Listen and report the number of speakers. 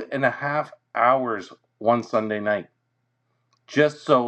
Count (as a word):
one